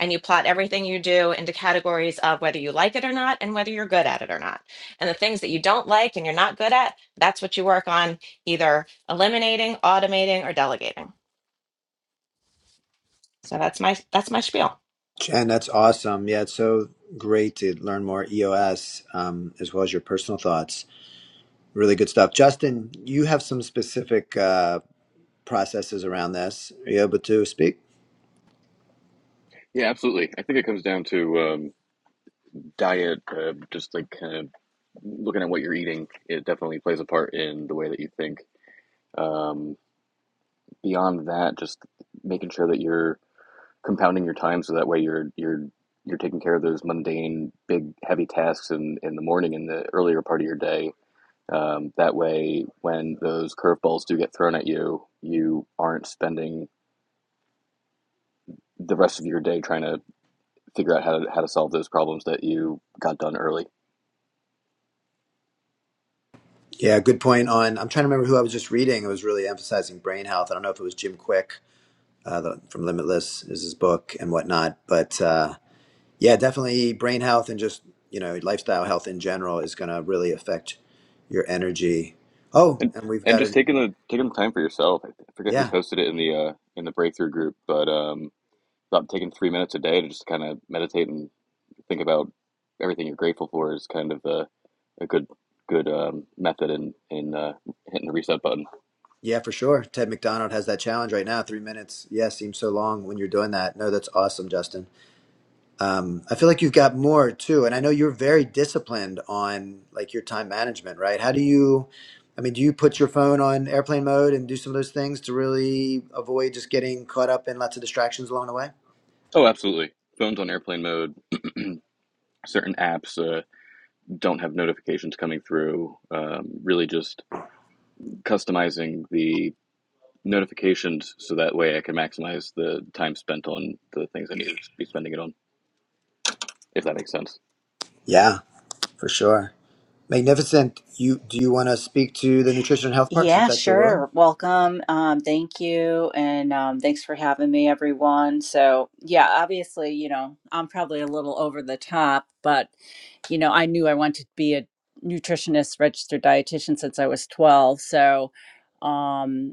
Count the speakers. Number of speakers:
4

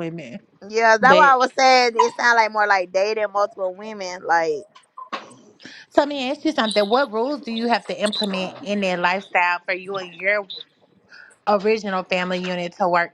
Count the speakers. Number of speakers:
2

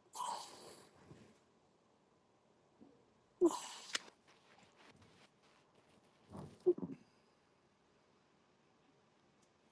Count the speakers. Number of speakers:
0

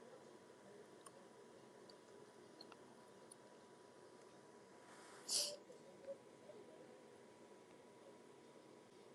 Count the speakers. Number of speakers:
0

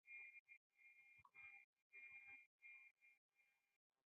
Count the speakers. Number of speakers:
0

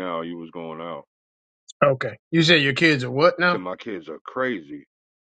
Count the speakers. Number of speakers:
2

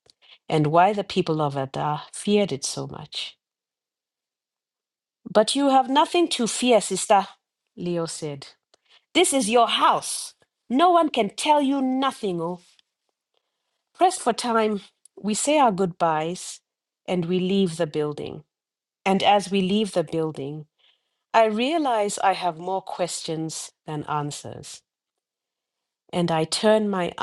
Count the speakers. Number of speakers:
1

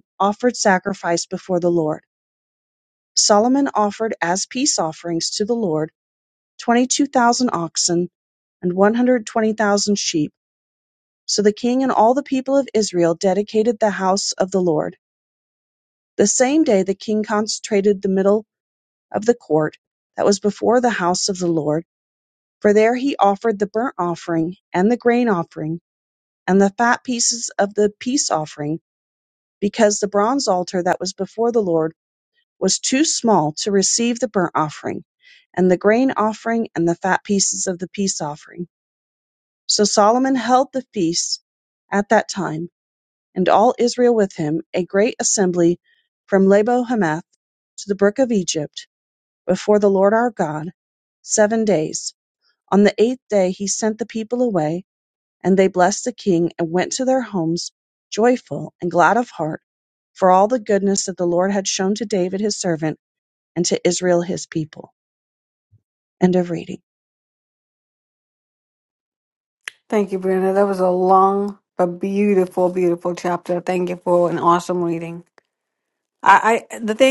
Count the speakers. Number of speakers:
2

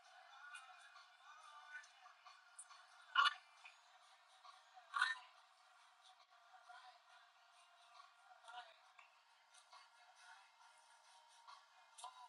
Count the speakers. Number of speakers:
0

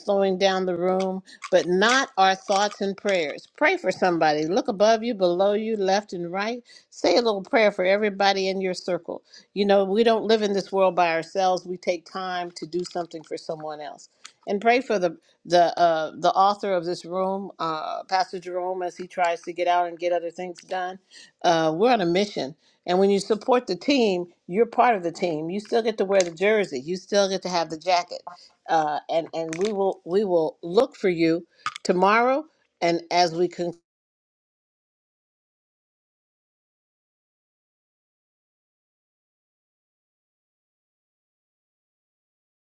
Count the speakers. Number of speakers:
1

